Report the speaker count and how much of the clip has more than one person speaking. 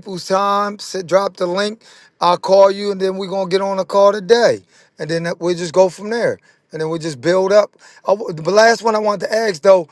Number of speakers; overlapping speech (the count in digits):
1, no overlap